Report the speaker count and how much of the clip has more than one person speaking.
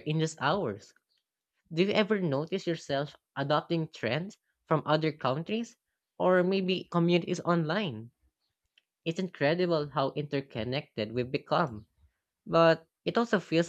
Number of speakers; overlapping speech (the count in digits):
1, no overlap